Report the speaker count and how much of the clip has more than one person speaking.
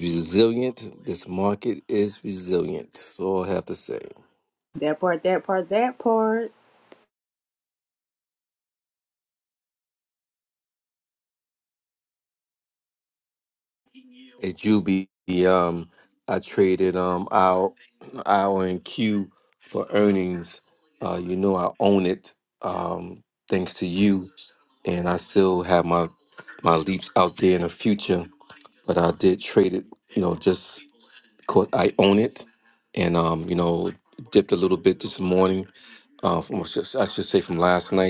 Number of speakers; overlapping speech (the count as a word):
two, no overlap